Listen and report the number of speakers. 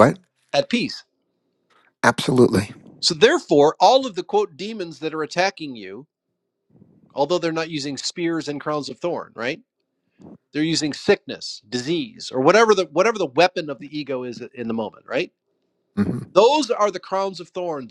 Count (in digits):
2